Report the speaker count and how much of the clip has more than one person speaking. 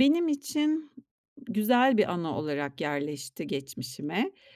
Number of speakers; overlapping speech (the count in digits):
1, no overlap